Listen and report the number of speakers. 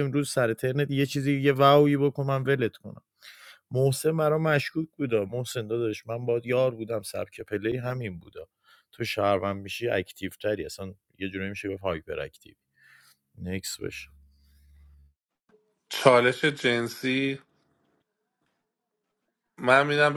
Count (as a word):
two